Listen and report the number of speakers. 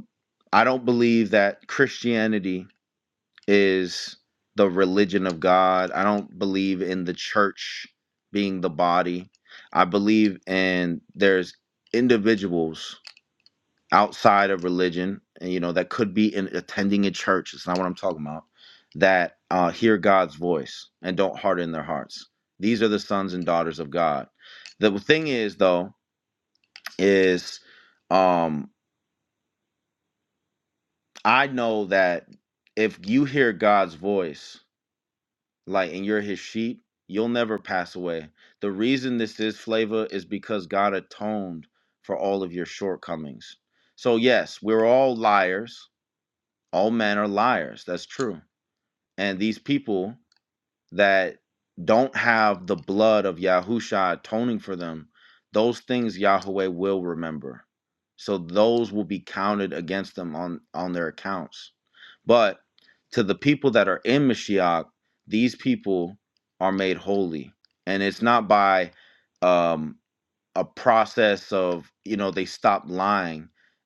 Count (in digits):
1